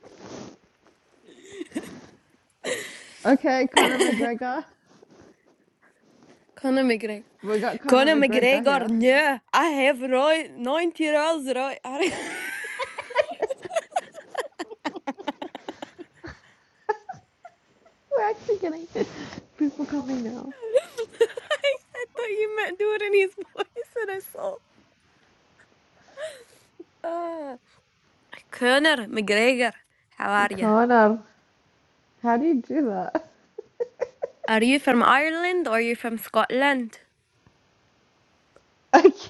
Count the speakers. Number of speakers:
two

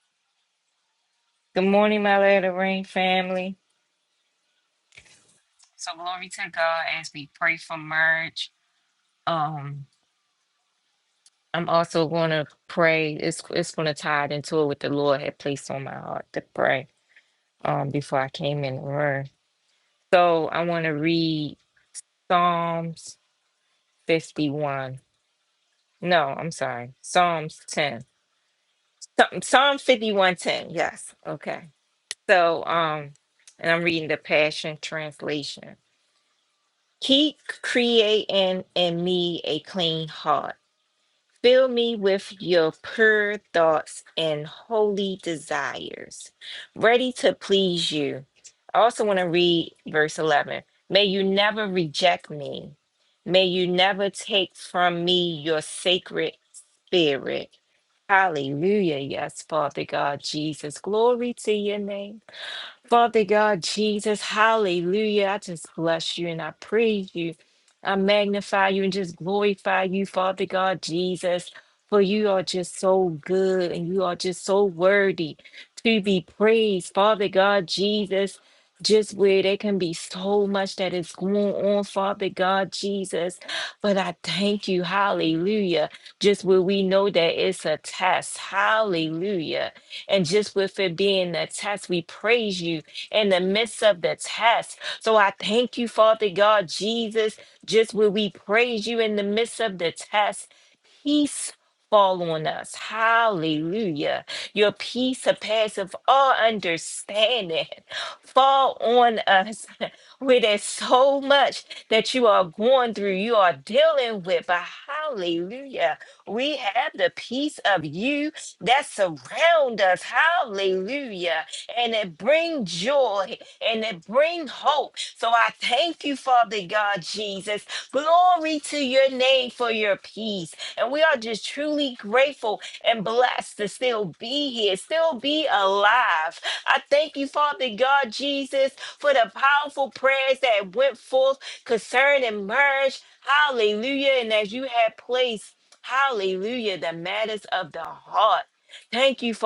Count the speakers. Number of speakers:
one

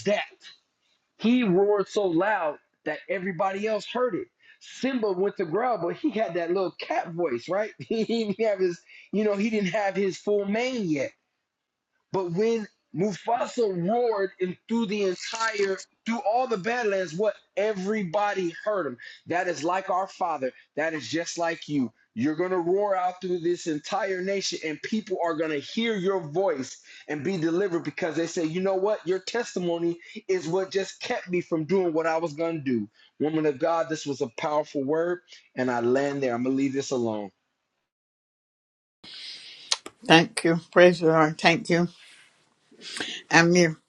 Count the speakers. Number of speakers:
two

